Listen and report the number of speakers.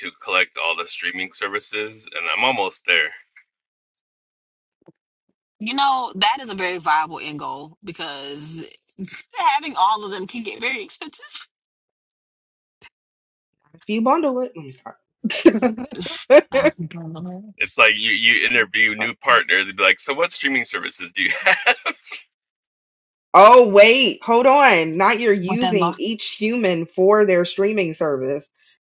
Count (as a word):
three